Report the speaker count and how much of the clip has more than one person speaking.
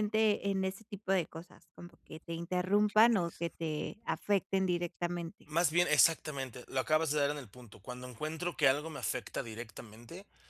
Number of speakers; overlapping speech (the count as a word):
two, no overlap